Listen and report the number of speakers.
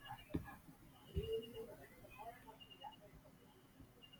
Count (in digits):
0